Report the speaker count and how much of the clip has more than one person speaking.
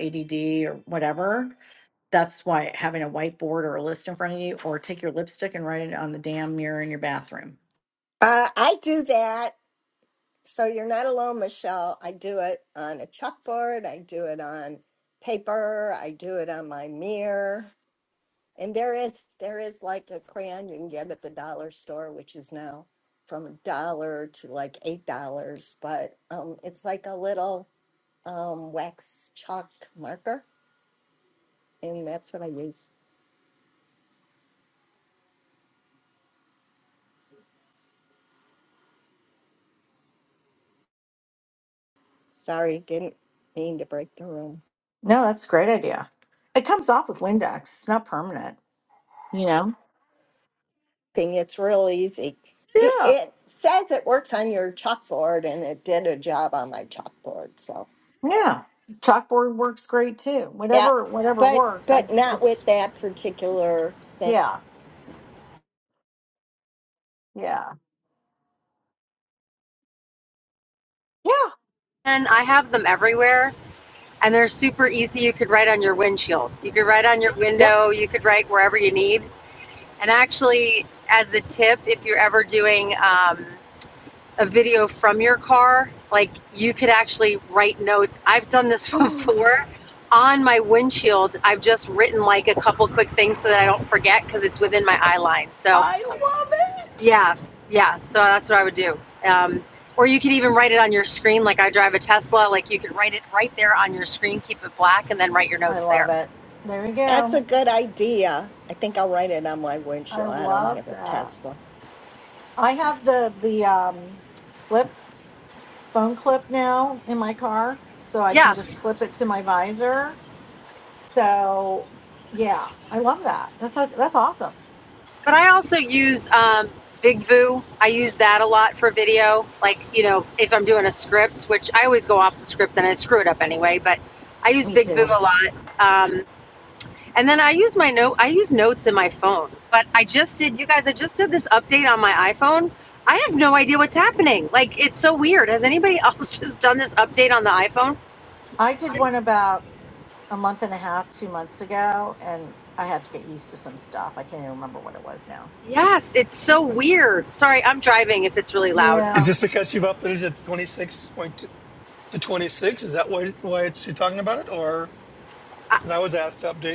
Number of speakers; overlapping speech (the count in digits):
4, about 3%